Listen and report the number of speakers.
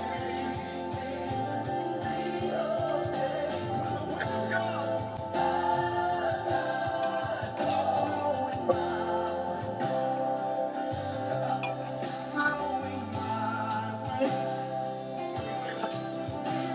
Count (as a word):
zero